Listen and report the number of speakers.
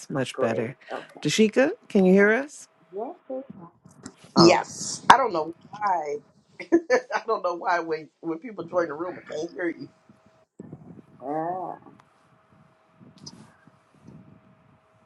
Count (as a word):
three